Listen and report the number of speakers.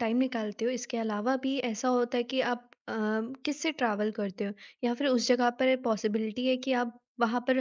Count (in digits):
1